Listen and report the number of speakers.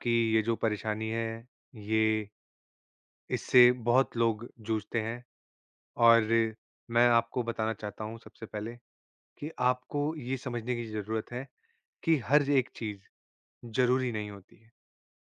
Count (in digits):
1